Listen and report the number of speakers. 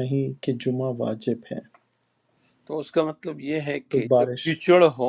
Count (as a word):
two